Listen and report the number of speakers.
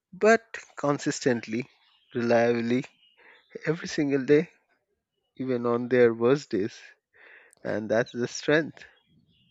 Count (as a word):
one